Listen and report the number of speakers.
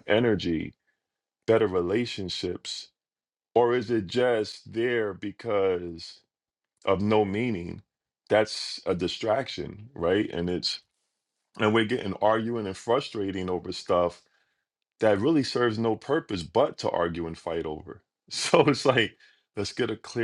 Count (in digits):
1